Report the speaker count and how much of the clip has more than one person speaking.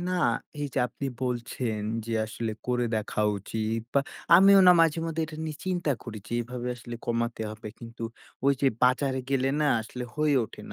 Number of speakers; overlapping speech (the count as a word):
one, no overlap